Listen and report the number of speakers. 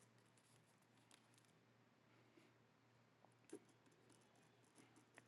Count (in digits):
0